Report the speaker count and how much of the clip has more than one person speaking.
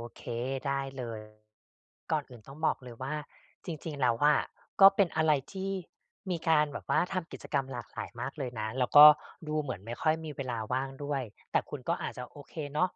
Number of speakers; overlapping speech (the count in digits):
1, no overlap